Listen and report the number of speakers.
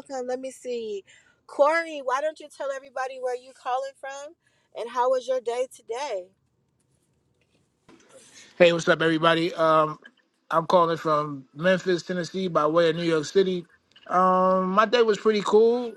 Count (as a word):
two